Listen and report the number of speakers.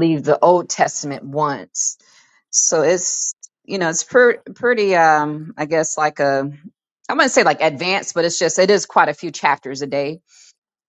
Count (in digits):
1